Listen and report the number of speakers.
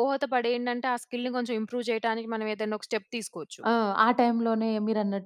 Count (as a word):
two